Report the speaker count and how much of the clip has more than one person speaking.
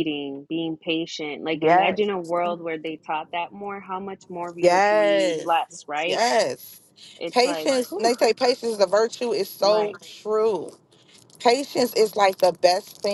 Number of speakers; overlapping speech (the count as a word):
two, about 20%